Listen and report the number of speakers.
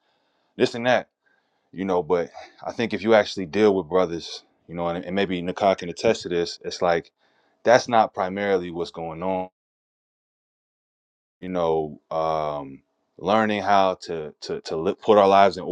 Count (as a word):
one